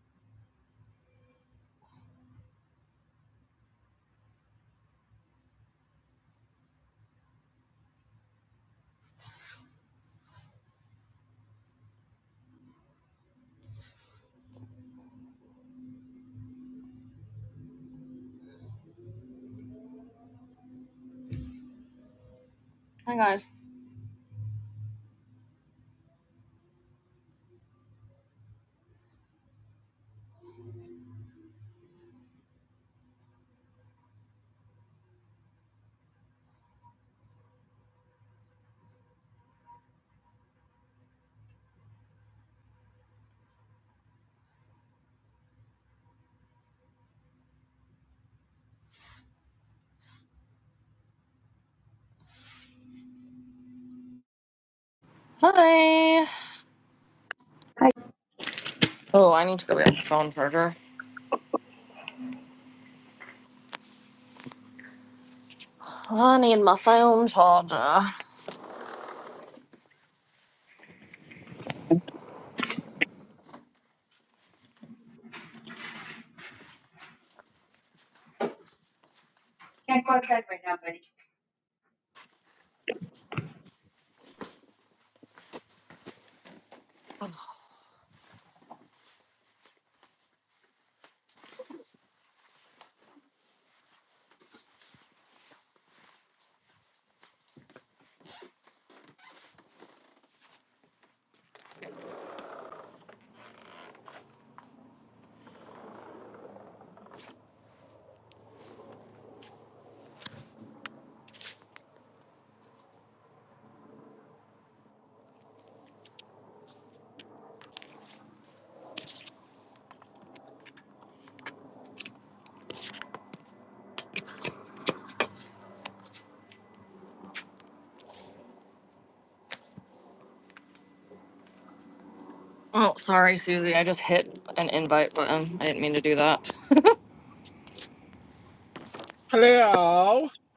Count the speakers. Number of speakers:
three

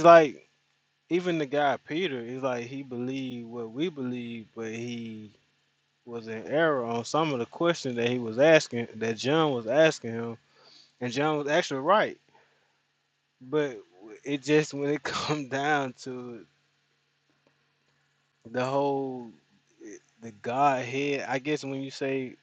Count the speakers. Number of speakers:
one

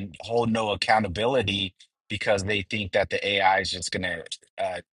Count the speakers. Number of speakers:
one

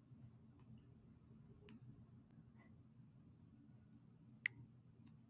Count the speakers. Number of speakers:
zero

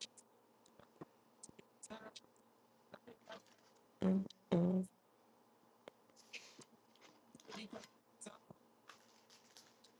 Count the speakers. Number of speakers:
zero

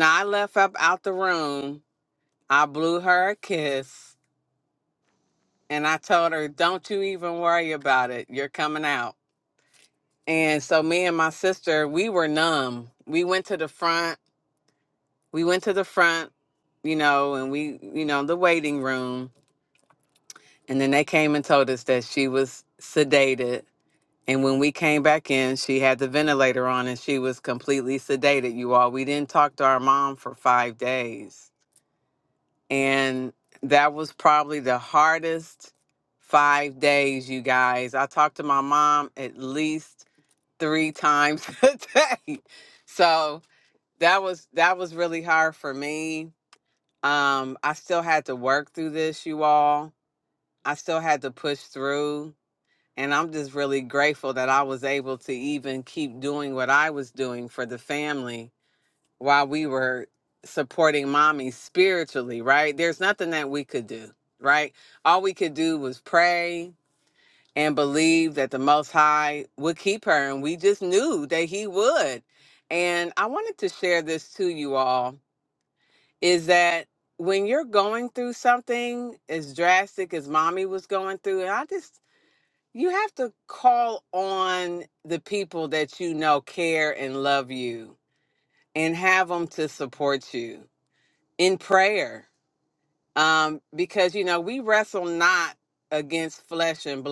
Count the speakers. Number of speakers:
one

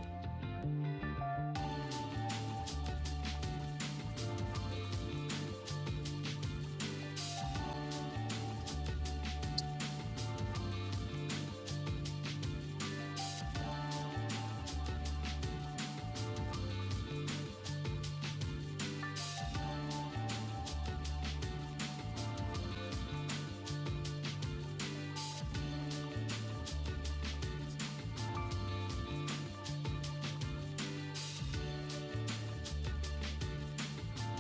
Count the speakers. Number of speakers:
zero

